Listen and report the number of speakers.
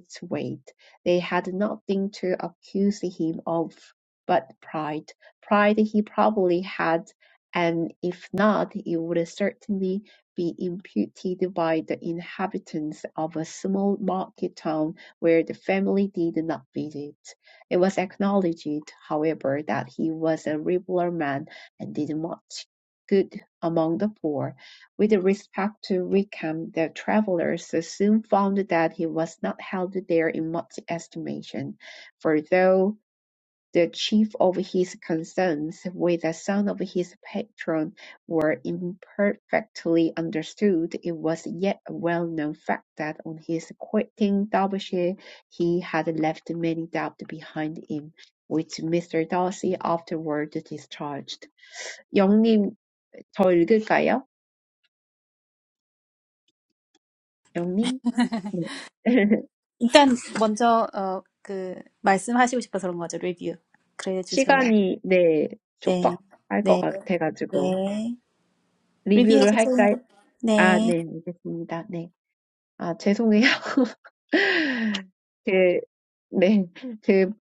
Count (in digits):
2